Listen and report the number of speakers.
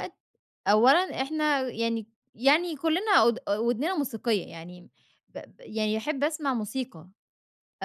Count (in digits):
1